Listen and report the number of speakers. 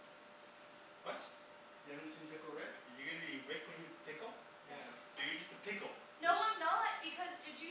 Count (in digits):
3